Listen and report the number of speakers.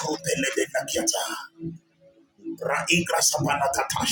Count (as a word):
one